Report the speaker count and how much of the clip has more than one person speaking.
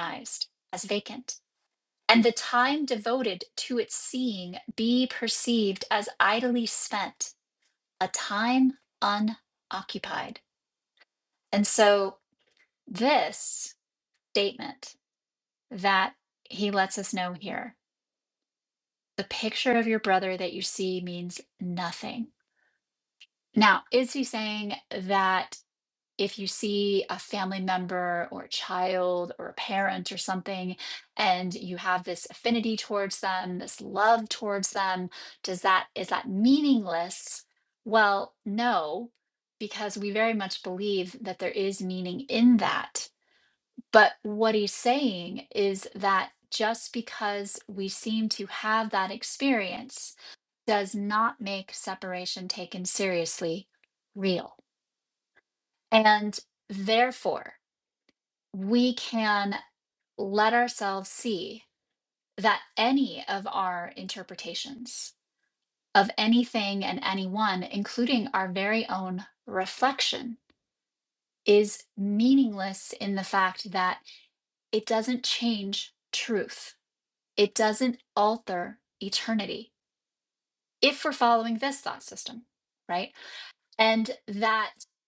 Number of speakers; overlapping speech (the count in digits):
1, no overlap